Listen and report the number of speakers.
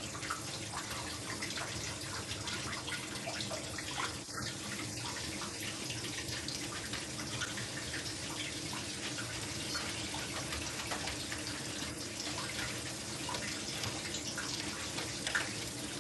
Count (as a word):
zero